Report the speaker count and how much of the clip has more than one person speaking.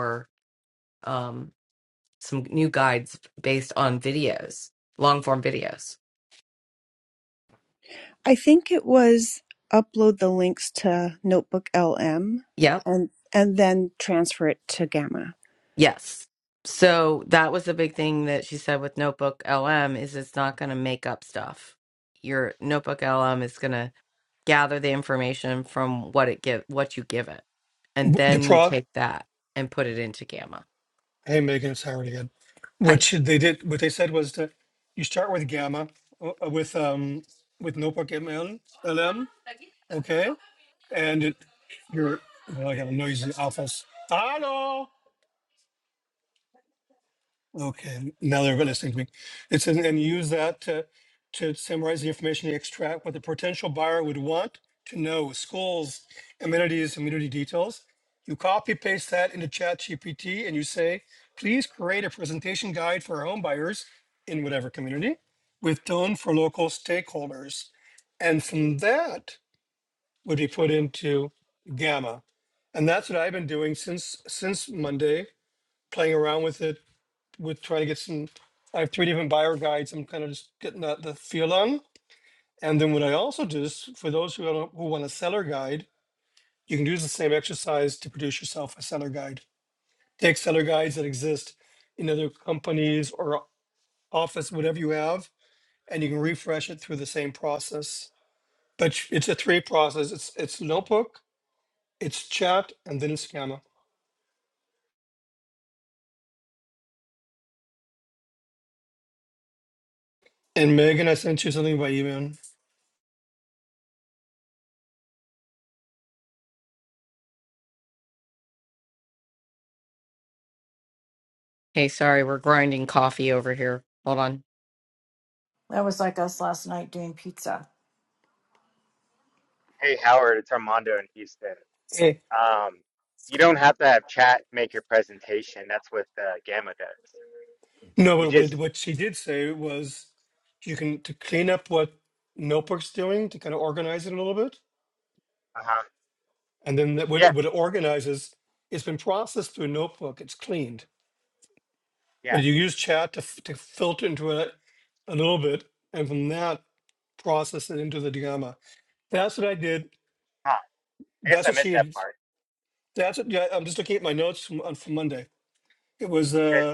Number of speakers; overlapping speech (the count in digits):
5, about 1%